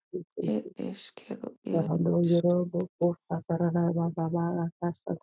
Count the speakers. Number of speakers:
2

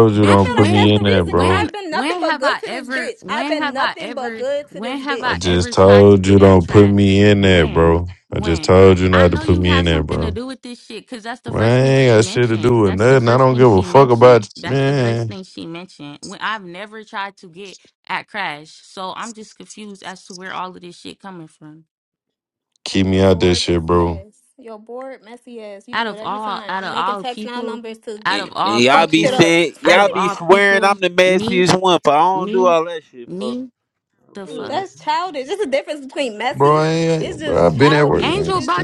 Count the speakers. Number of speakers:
4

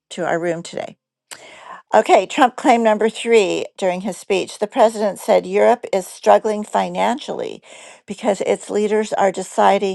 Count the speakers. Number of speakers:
1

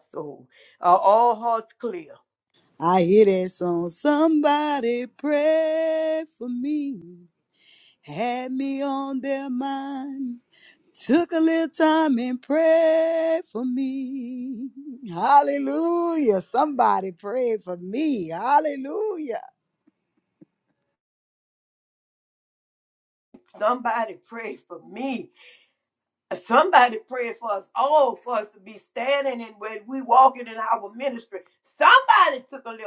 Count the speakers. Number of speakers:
2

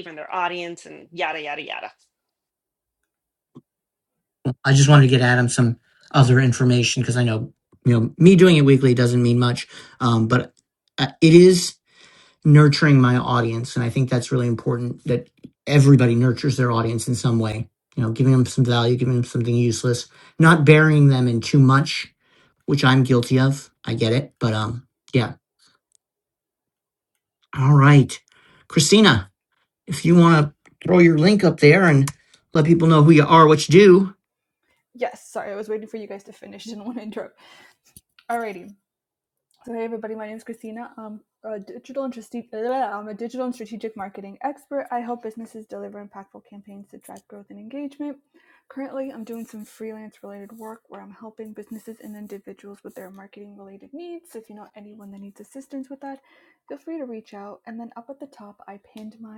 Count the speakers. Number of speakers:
3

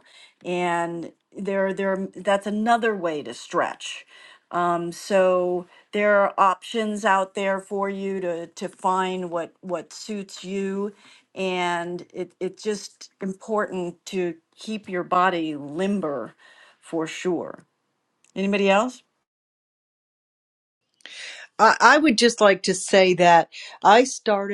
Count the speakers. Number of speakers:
2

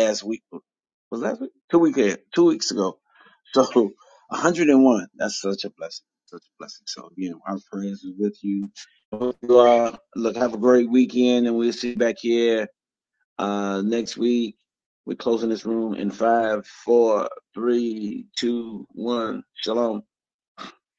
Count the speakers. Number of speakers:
1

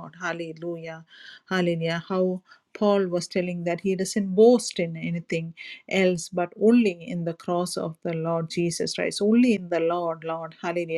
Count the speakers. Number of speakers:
1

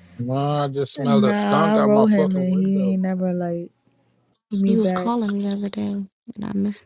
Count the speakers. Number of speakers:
3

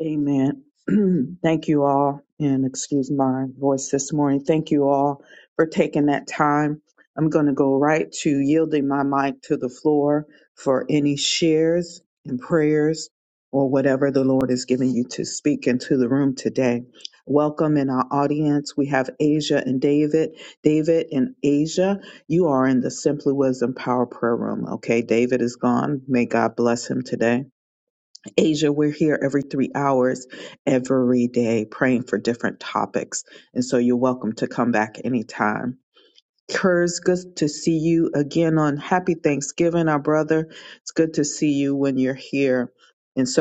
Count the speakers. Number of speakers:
1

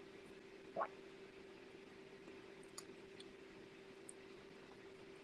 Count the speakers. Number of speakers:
0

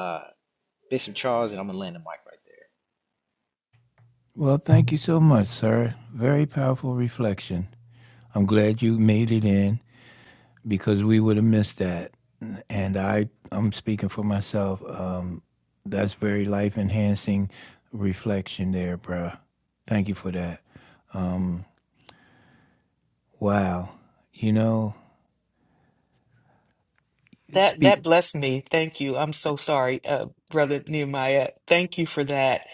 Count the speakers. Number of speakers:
3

